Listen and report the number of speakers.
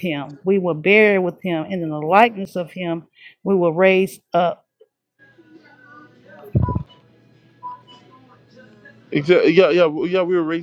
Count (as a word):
two